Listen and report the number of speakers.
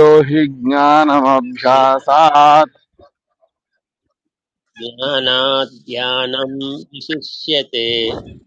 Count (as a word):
two